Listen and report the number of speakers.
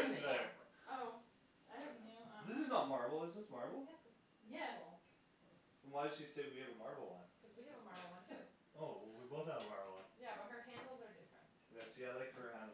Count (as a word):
three